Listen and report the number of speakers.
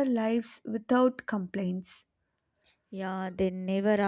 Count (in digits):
2